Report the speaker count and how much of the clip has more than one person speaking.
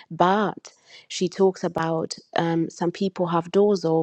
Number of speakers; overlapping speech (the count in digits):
1, no overlap